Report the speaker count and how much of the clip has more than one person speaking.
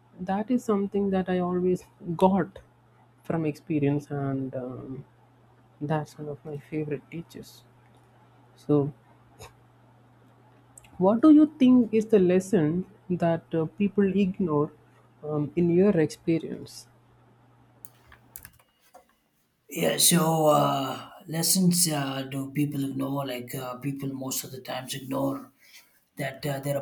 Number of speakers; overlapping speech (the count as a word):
two, no overlap